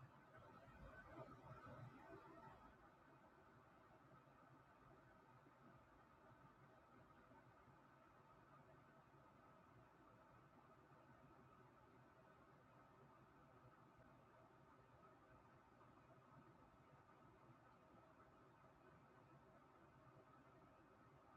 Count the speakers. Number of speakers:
0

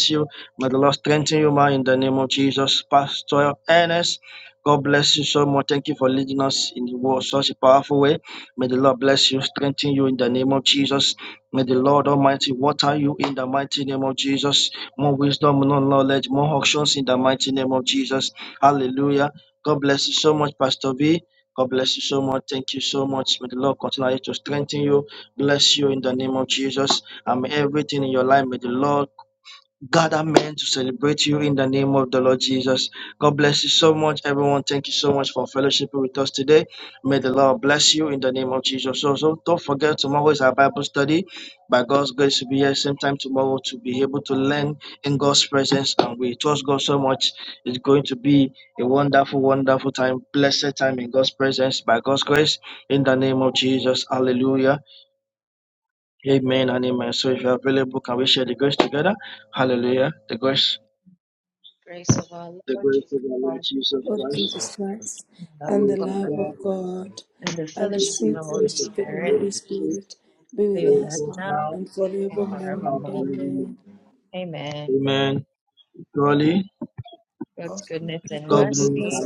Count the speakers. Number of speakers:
3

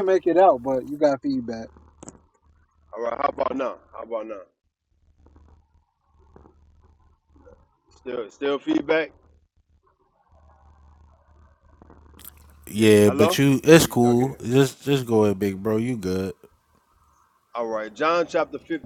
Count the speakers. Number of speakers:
3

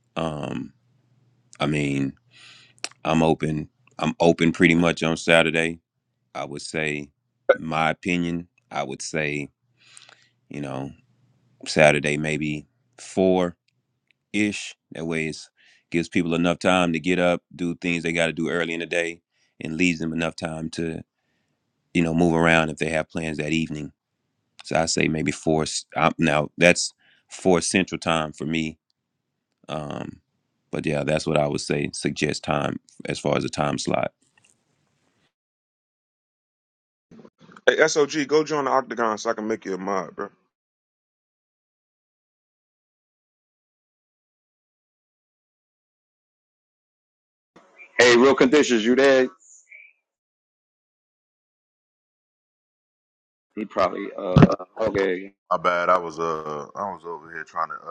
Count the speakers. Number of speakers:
4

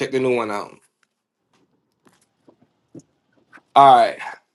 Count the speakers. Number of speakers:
1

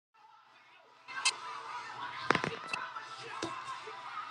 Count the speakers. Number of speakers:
0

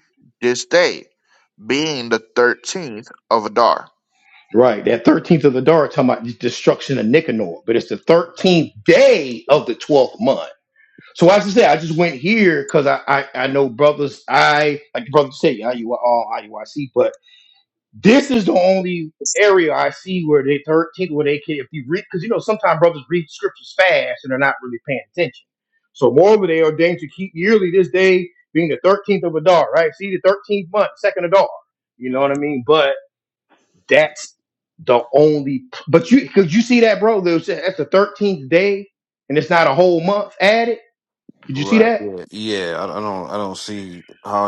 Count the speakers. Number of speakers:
3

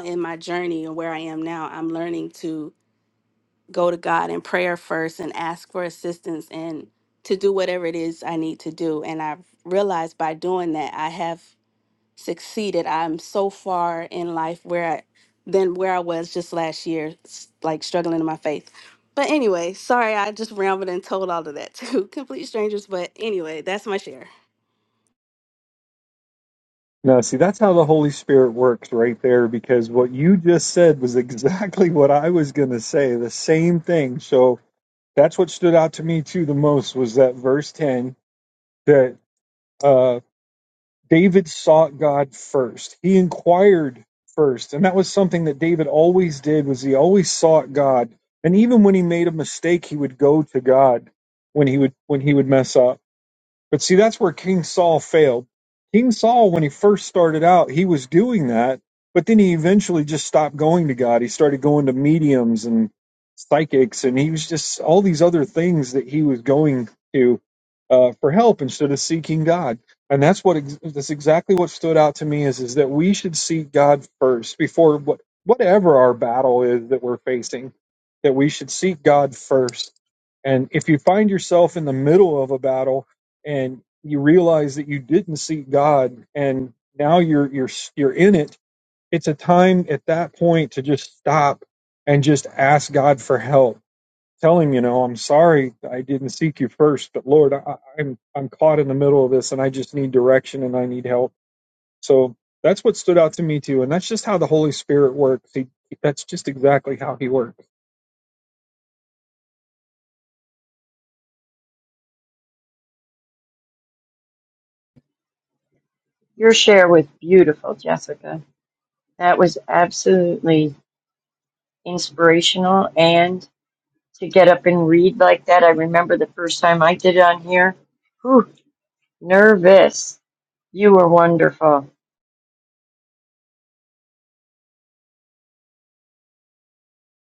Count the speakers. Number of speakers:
3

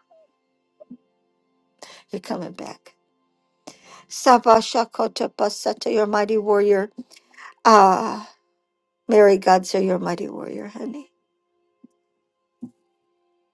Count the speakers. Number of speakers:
1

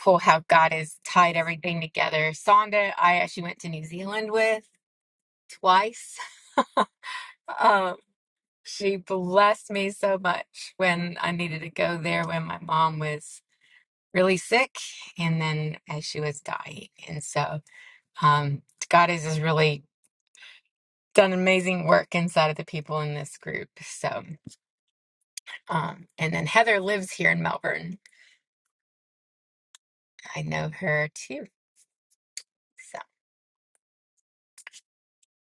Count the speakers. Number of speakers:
1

